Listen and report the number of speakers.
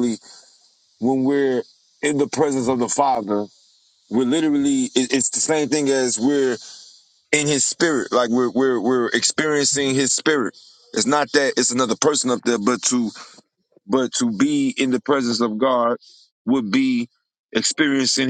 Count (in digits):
1